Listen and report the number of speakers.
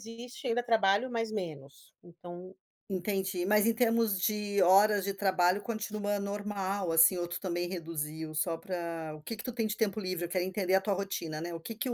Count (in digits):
2